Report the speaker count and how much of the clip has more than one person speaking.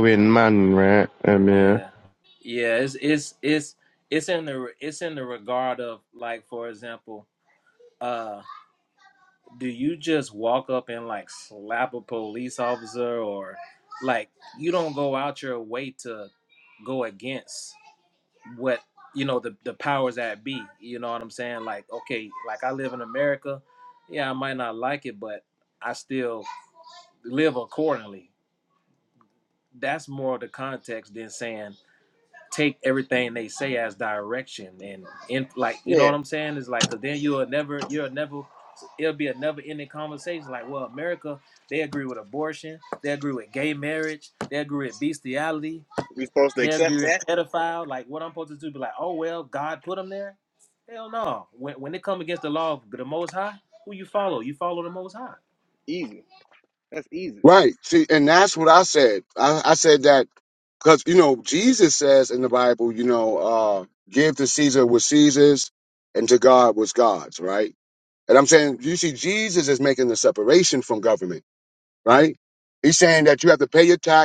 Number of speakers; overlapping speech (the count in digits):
4, about 2%